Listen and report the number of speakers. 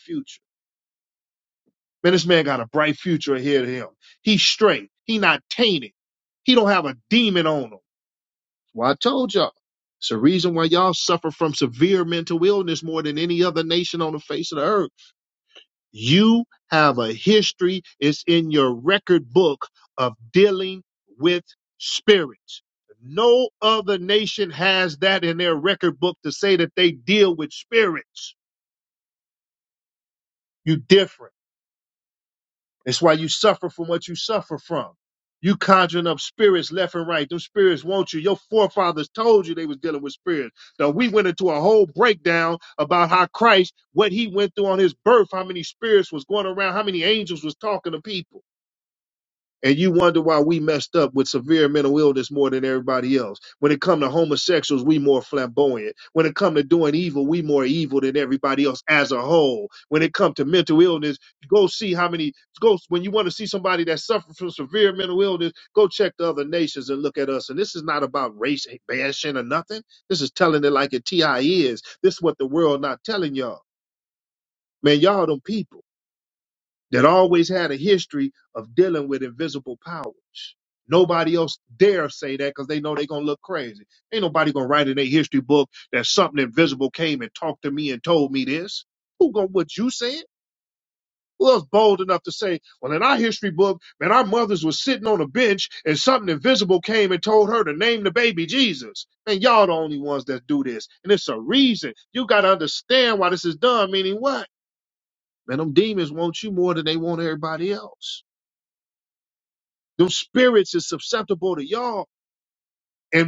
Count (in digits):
1